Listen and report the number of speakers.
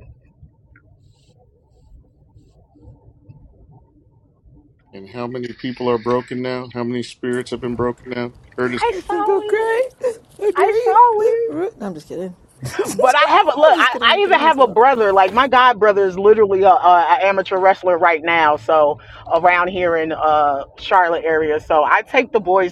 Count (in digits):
3